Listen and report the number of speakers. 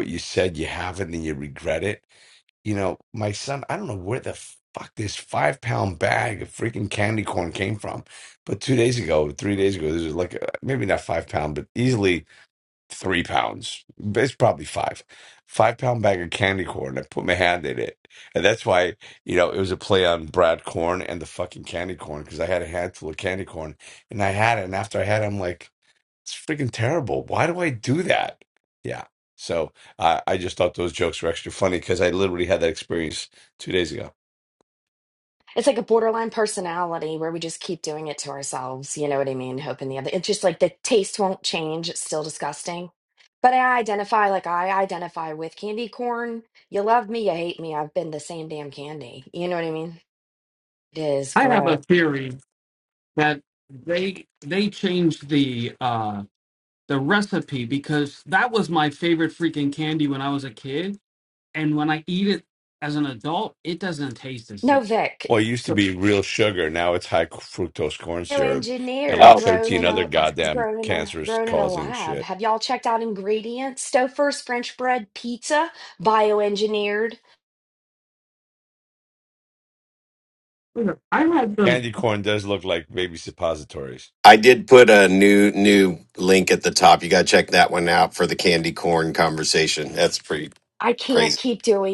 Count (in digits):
4